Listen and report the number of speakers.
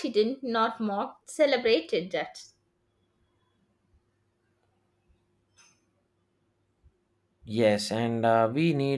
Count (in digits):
2